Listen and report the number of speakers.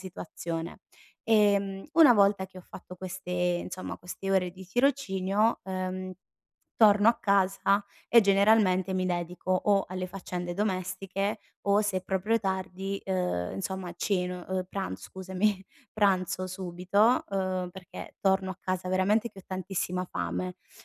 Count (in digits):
1